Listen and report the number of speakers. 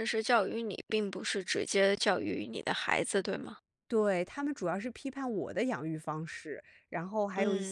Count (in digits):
2